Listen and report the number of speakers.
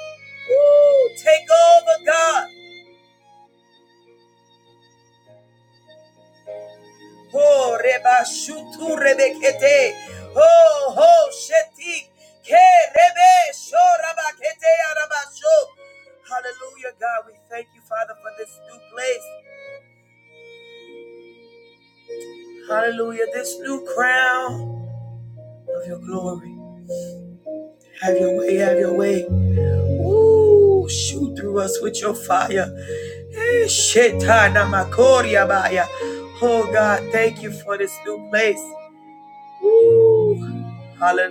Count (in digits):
1